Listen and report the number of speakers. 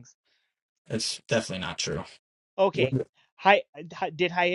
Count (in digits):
2